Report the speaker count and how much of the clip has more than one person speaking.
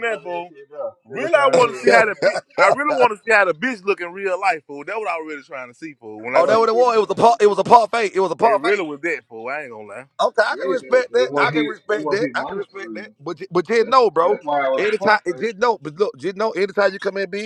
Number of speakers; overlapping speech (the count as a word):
three, about 35%